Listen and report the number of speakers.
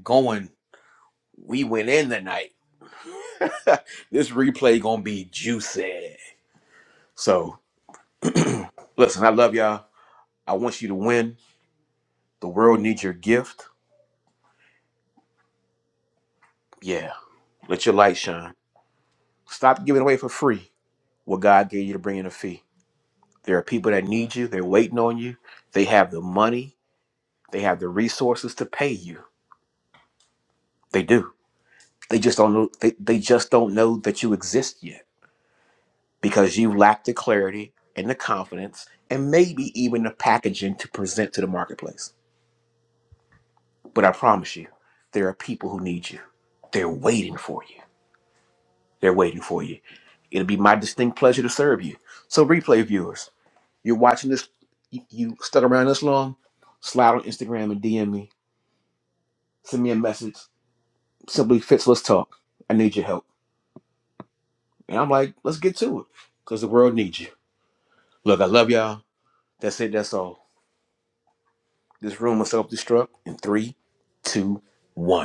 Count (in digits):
1